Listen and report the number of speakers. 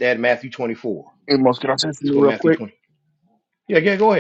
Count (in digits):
2